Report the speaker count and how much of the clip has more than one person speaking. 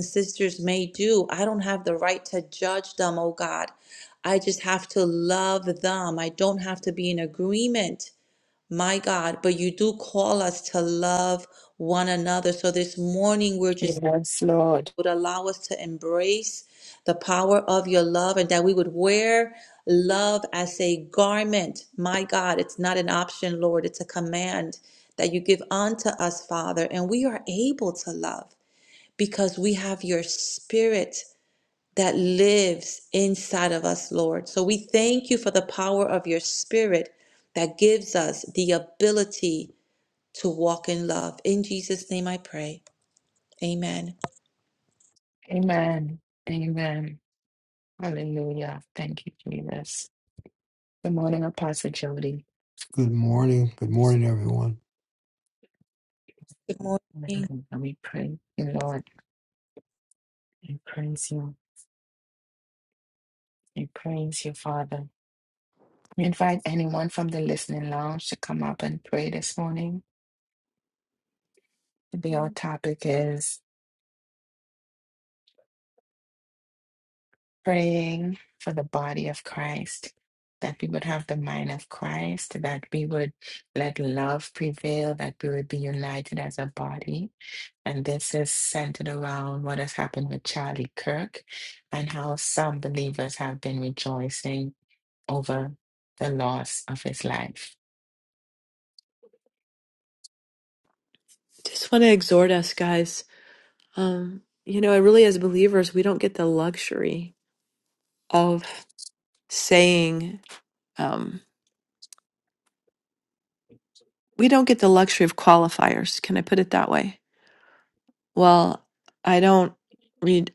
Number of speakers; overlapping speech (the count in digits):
4, under 1%